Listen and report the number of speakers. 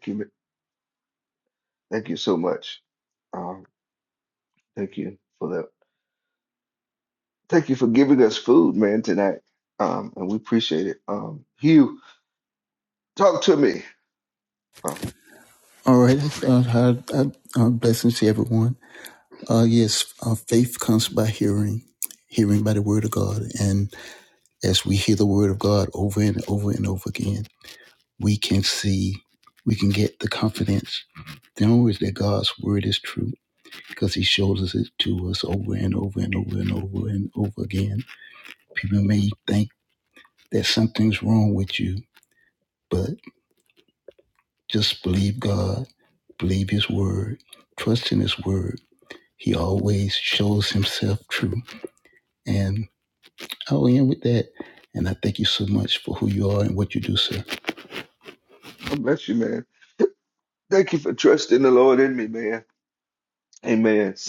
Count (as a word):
two